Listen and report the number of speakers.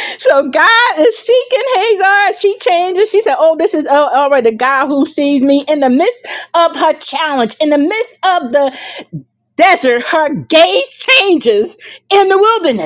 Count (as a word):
one